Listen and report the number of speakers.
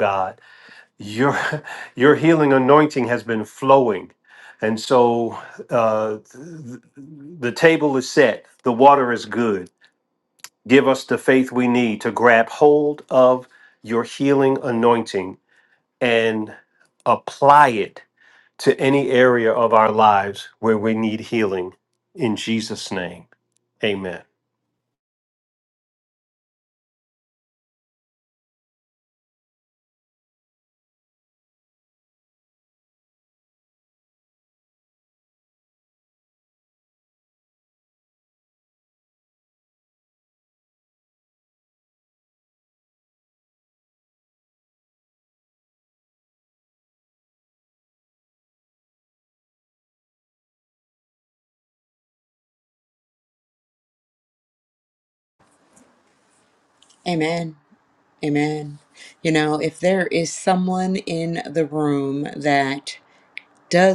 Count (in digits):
2